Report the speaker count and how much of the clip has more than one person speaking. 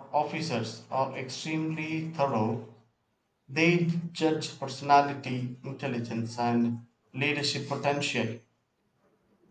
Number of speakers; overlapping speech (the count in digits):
1, no overlap